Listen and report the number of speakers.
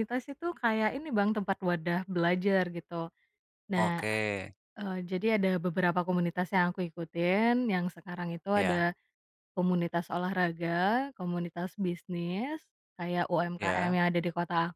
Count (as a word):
two